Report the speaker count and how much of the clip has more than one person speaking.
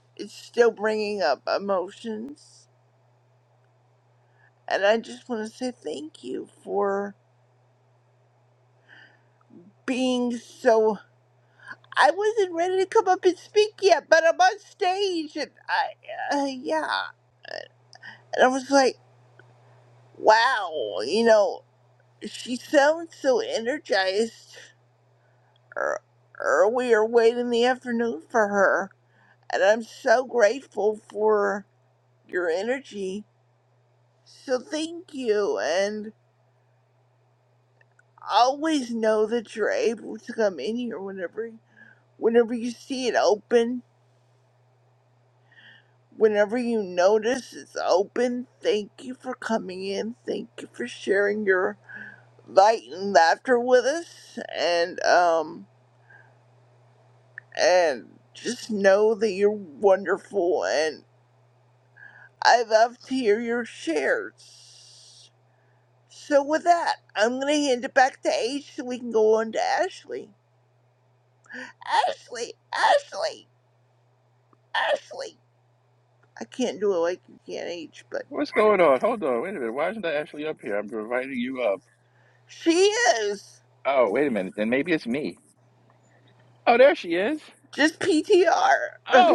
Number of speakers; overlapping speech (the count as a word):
two, under 1%